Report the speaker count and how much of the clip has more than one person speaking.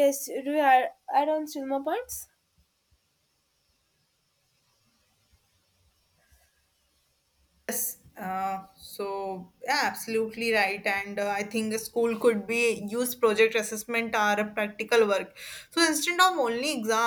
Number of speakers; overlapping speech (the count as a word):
two, no overlap